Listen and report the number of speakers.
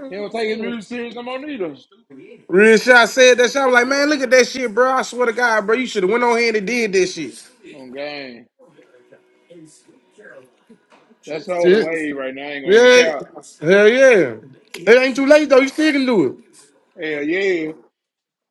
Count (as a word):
two